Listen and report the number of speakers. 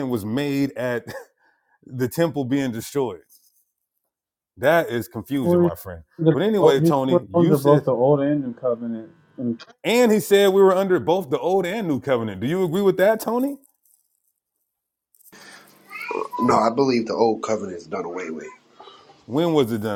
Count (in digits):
3